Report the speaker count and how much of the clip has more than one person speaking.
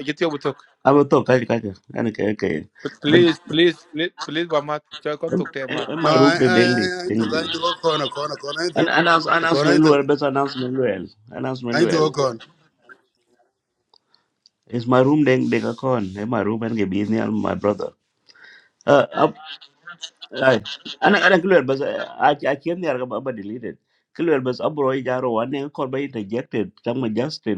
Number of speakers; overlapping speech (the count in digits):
3, about 12%